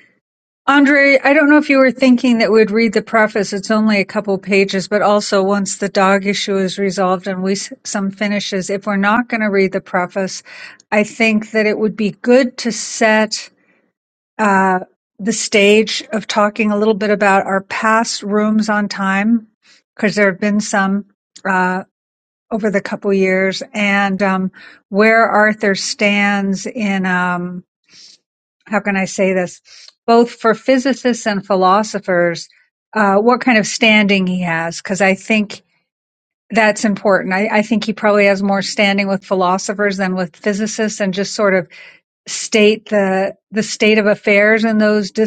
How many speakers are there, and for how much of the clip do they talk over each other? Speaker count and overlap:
one, no overlap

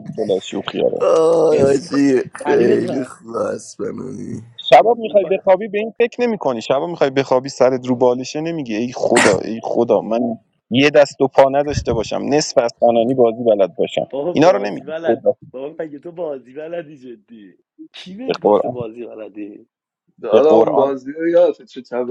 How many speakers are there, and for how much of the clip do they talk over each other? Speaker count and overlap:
four, about 18%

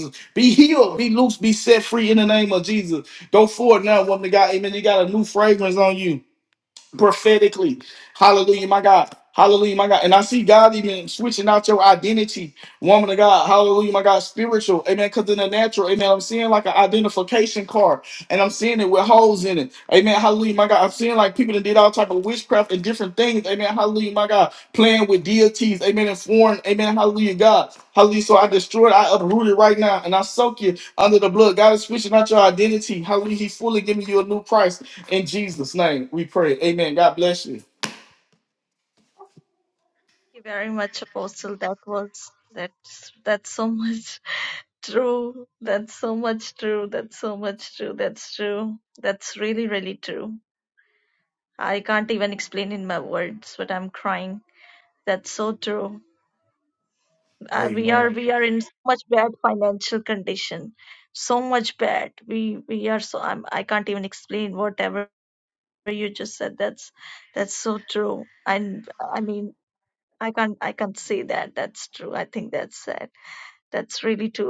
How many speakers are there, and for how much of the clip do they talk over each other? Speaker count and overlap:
two, about 1%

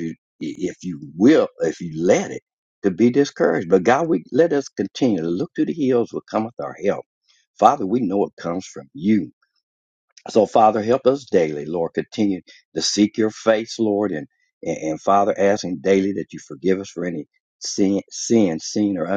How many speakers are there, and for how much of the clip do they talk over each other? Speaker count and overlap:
one, no overlap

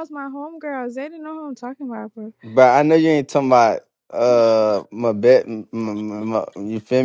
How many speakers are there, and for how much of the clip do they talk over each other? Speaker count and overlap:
two, no overlap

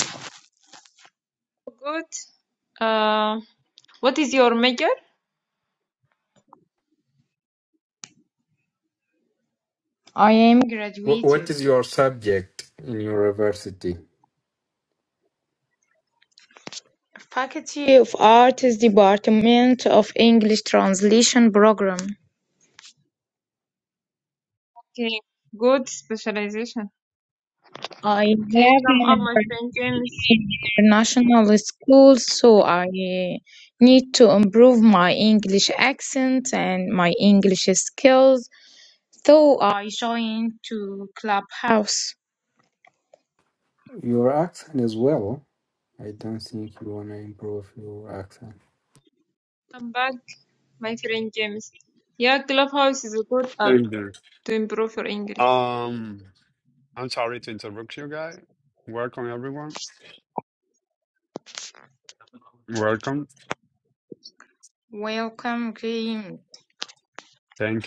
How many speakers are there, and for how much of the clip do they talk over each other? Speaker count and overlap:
four, about 2%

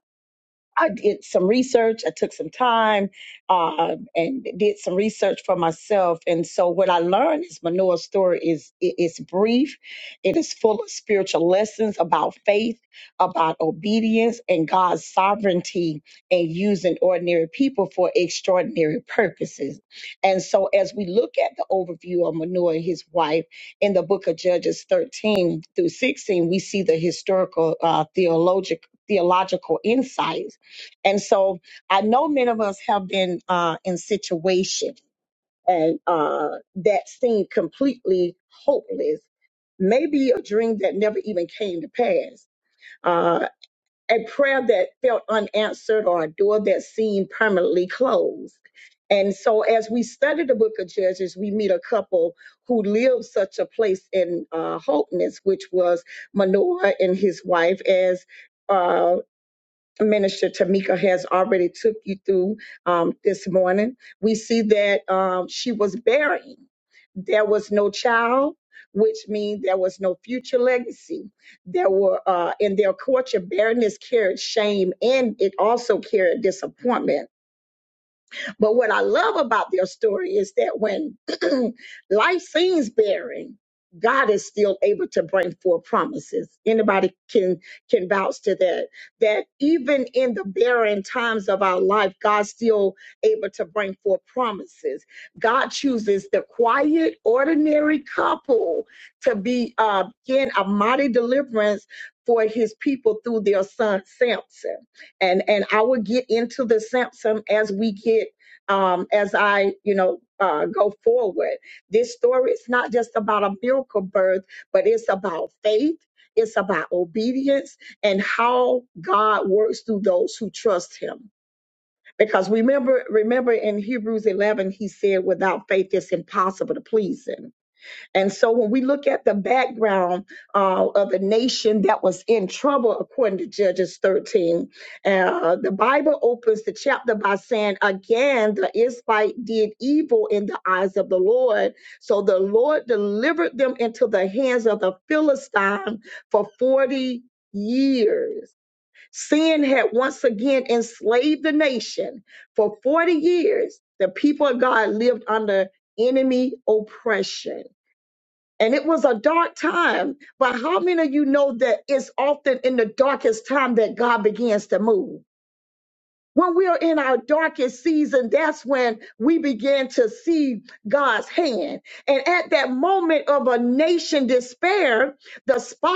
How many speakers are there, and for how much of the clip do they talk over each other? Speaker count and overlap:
one, no overlap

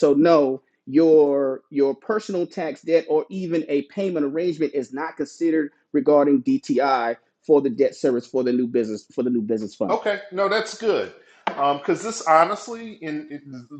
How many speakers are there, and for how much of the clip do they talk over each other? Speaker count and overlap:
two, about 1%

